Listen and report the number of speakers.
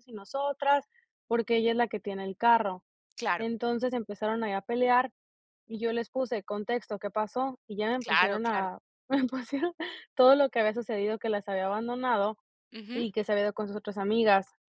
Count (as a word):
two